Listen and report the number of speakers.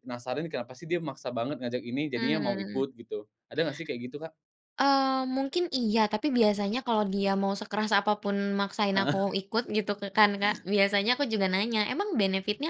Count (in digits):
2